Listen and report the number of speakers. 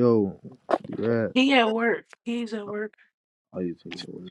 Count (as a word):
two